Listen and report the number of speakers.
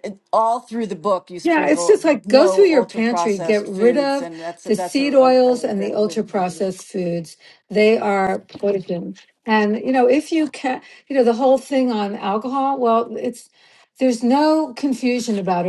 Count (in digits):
2